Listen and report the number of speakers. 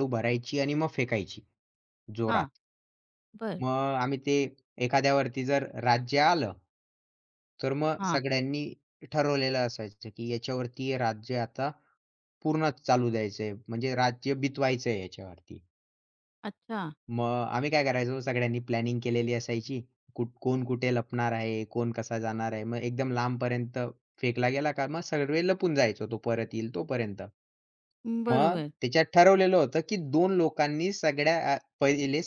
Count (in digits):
2